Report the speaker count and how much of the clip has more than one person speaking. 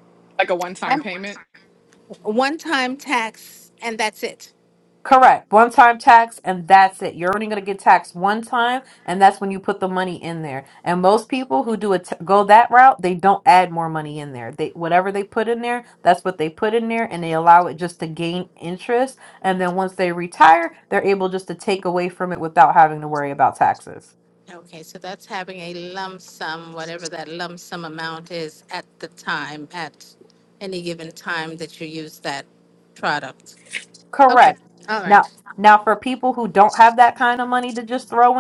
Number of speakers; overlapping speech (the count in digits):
3, about 1%